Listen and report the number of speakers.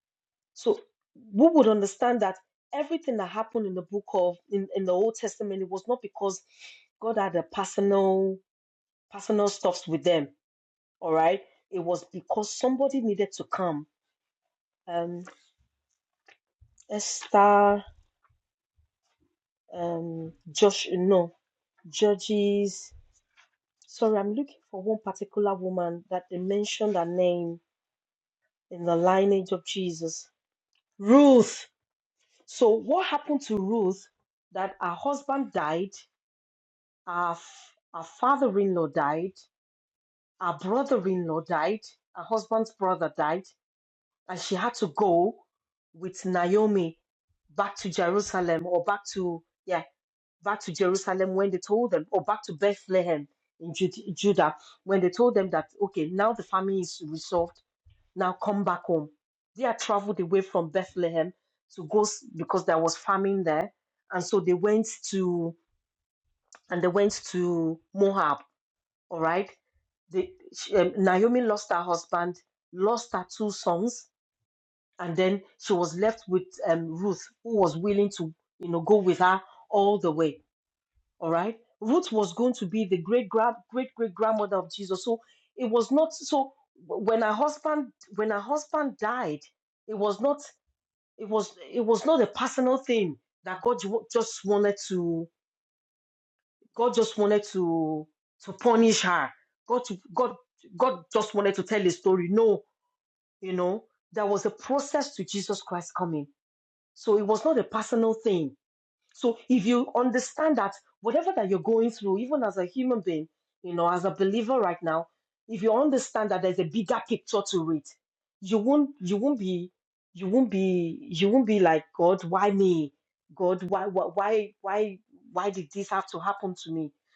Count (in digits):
1